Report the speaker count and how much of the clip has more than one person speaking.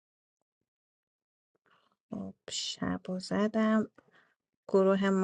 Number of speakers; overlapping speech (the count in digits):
1, no overlap